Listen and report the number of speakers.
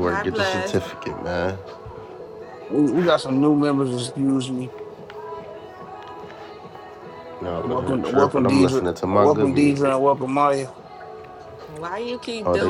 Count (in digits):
3